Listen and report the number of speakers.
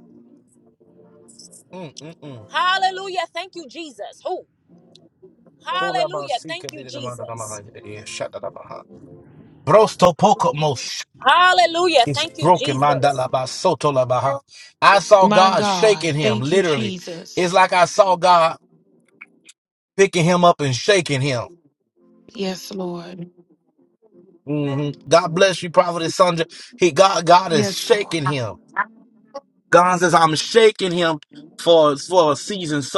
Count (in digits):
3